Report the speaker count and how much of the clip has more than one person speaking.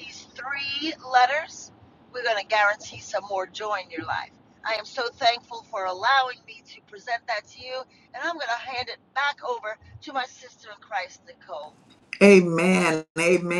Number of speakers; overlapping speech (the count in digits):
2, no overlap